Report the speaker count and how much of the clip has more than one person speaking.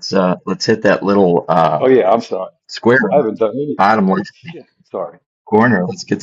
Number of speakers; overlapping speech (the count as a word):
two, about 6%